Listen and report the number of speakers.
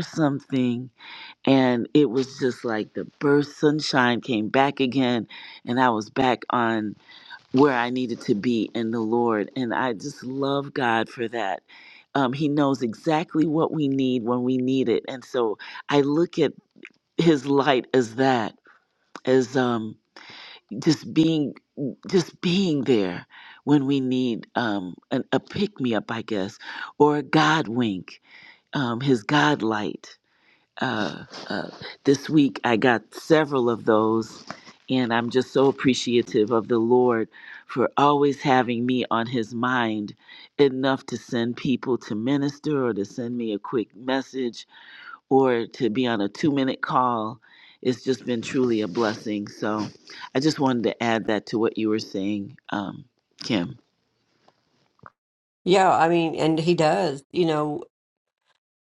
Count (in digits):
2